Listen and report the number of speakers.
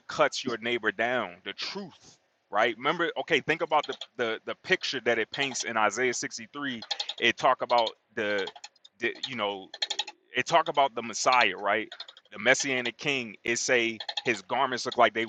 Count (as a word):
one